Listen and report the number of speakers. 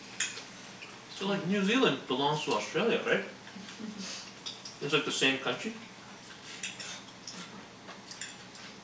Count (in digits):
1